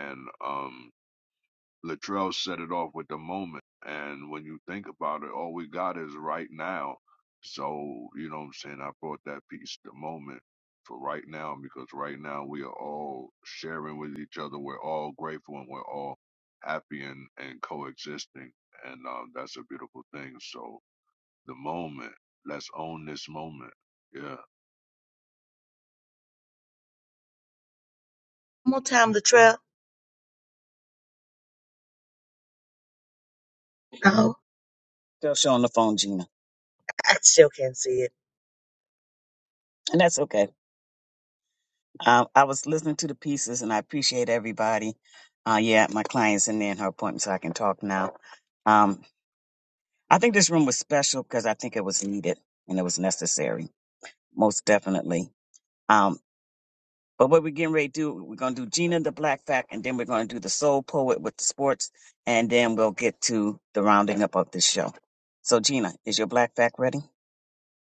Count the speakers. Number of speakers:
three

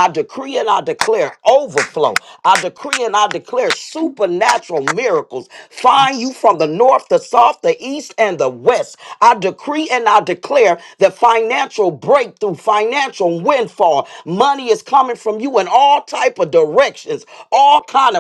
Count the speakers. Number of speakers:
one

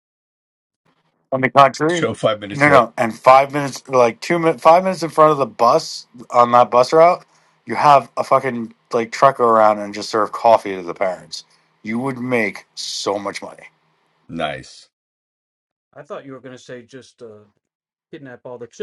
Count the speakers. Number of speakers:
three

